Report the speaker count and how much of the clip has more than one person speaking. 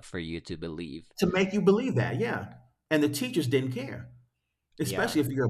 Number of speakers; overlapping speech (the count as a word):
two, about 7%